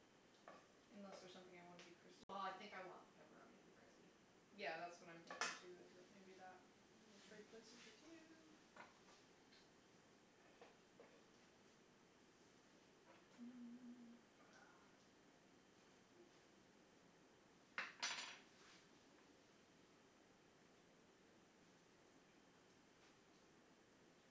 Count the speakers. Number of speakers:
2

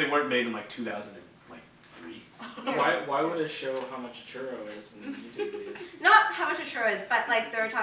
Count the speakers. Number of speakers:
3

